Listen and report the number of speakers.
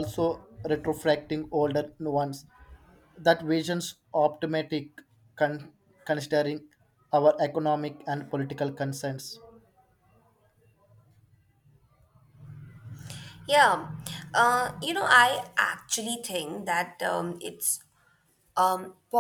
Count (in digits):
2